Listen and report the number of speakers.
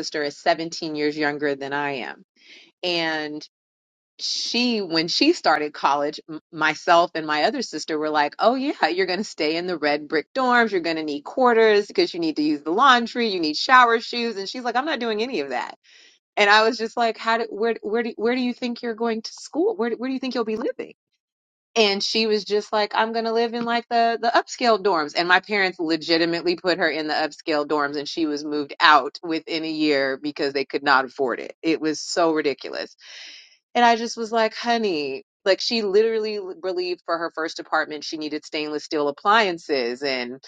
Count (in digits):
1